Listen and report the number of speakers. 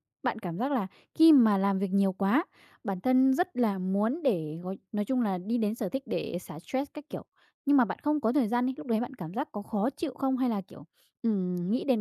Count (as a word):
one